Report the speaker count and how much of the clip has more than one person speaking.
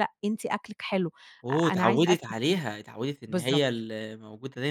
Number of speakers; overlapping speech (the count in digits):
2, about 25%